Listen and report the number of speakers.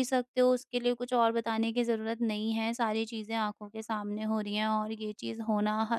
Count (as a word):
one